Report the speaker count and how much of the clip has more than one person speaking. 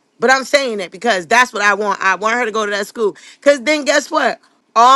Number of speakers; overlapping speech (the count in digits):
1, no overlap